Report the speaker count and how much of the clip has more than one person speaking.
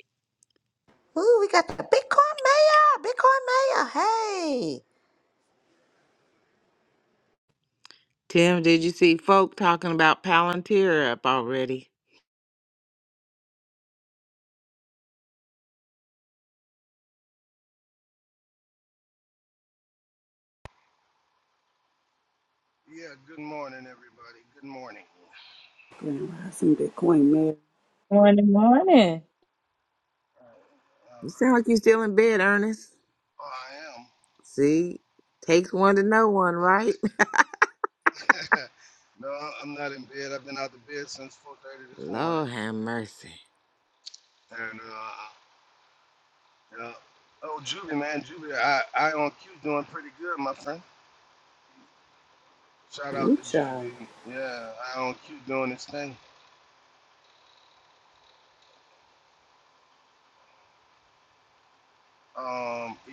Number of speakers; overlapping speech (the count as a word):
five, about 2%